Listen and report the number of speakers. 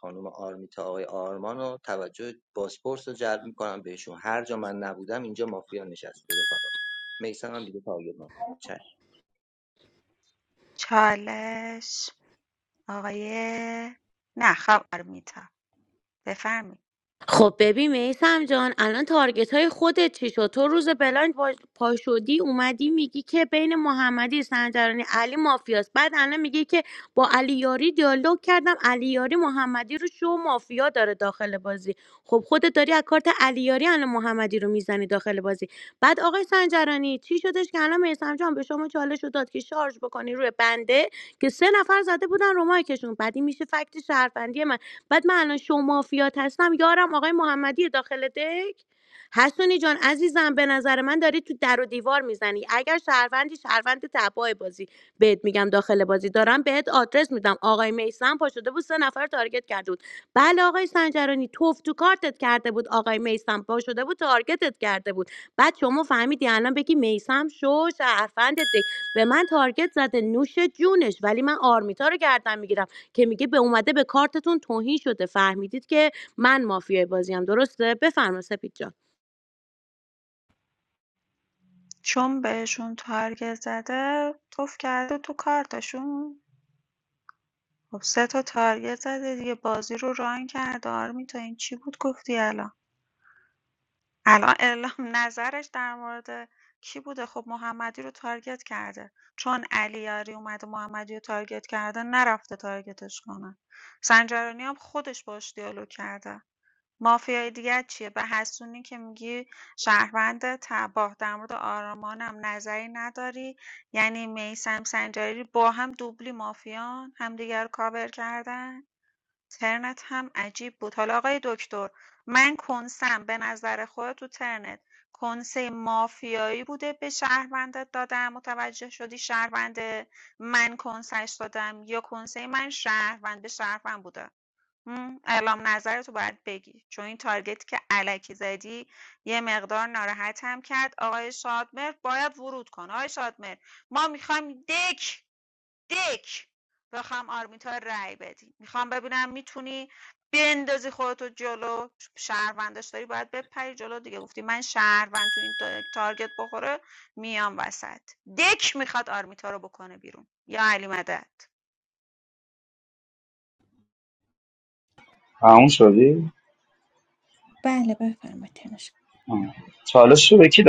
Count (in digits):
5